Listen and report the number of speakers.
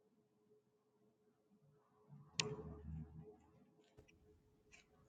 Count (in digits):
0